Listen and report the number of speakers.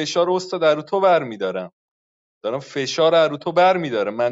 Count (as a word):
one